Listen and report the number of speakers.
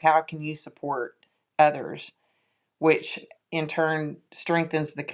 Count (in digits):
1